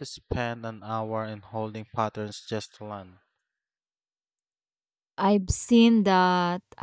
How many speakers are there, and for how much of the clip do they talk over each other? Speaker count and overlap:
two, no overlap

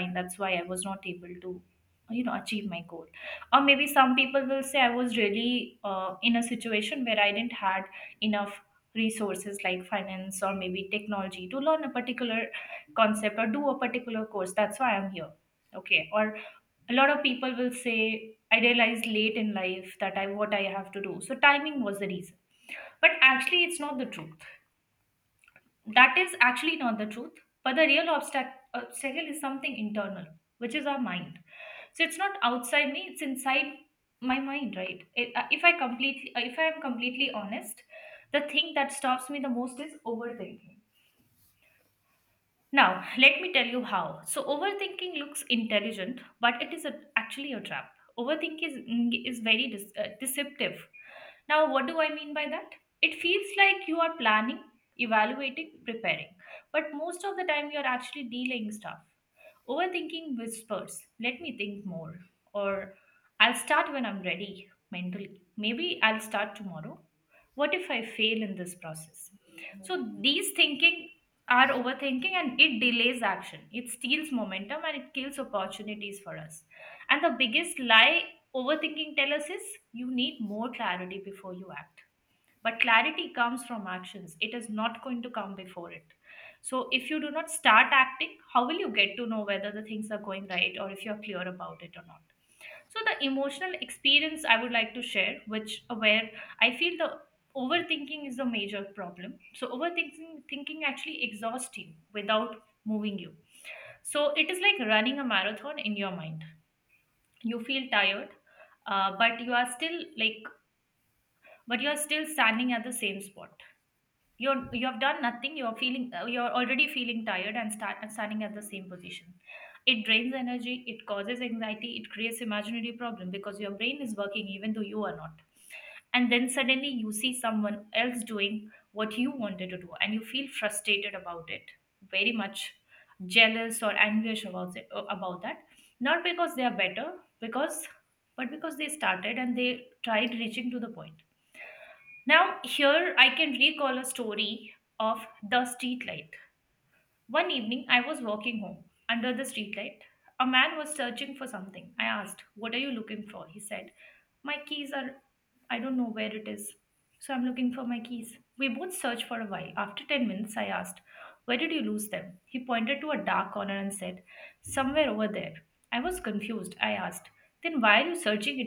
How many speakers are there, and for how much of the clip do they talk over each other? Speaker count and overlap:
one, no overlap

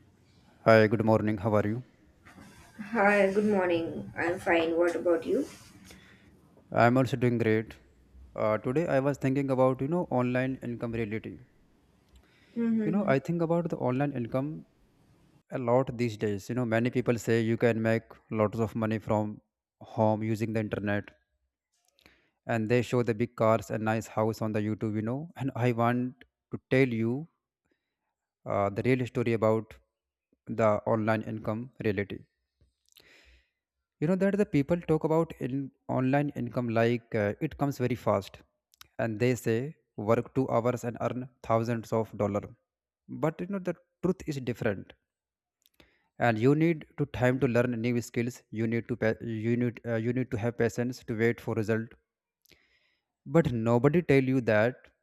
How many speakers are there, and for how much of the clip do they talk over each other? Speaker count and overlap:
two, about 1%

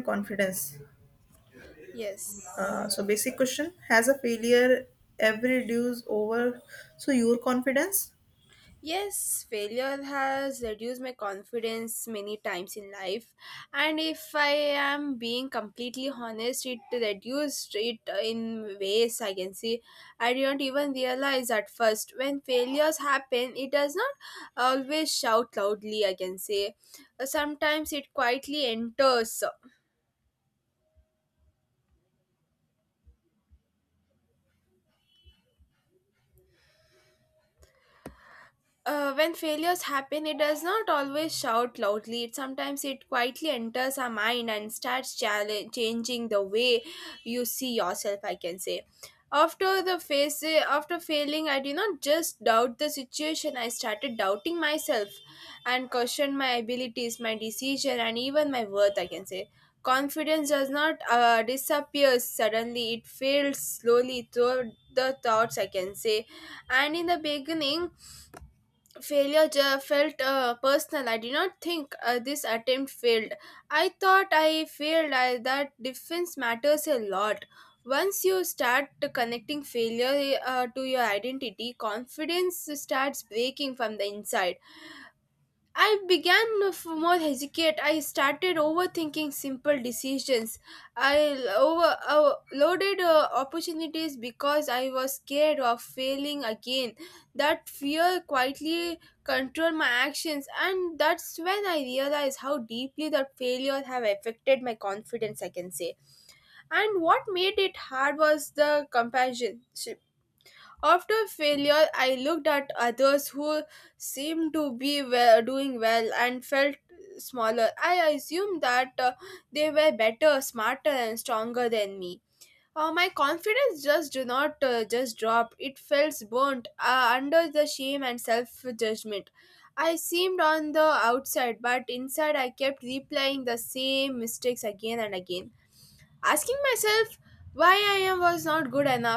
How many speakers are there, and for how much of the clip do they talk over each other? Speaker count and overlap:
two, no overlap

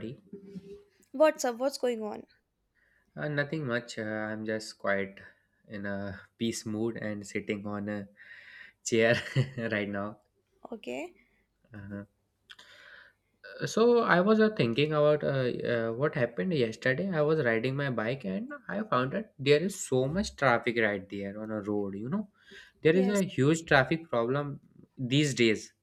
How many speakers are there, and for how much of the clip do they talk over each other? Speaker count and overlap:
two, about 1%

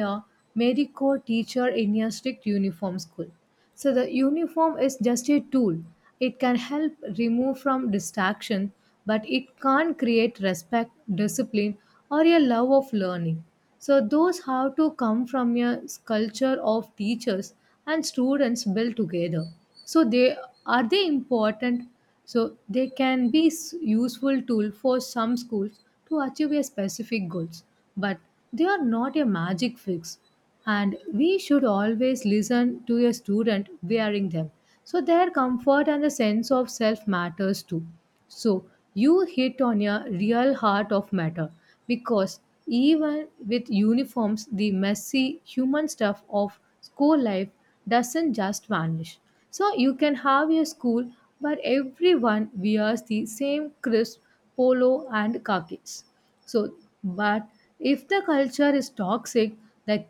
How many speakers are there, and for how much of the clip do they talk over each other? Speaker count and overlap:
one, no overlap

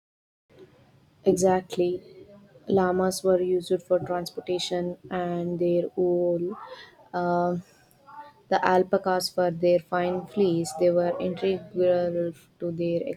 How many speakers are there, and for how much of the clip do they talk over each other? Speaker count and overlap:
one, no overlap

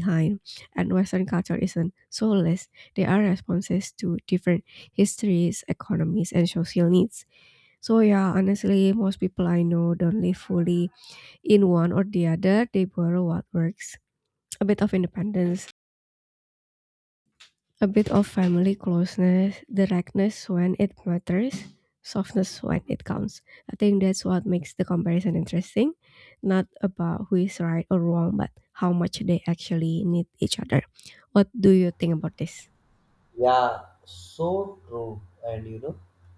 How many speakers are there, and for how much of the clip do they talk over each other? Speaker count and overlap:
two, no overlap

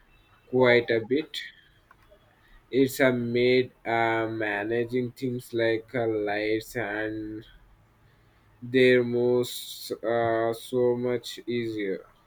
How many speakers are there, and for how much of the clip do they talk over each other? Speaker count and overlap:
one, no overlap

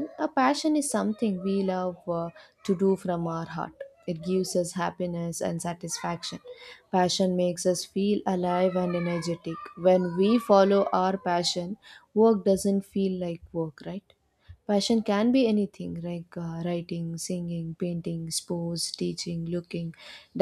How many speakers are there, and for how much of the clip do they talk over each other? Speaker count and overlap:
one, no overlap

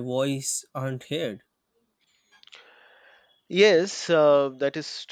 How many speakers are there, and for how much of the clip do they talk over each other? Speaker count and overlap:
two, no overlap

